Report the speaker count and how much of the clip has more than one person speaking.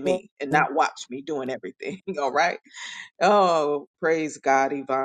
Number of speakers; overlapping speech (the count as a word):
one, no overlap